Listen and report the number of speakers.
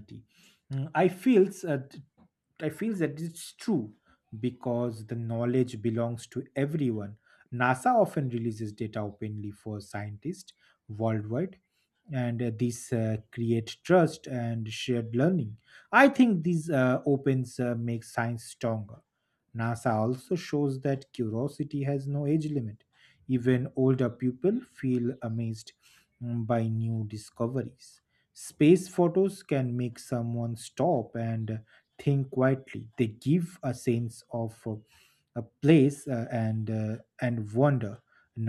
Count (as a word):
one